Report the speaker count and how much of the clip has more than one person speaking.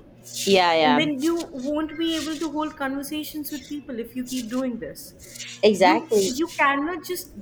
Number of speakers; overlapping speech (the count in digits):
2, about 11%